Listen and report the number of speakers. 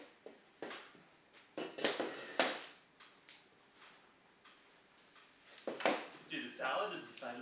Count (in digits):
1